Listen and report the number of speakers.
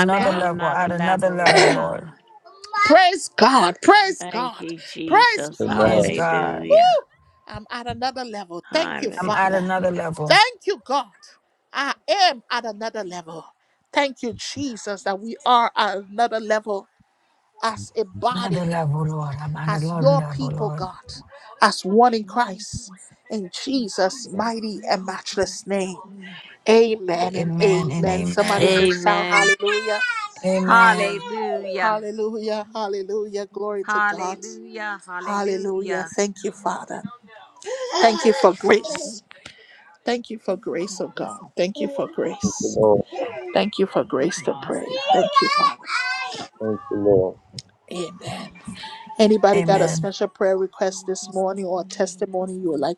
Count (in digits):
4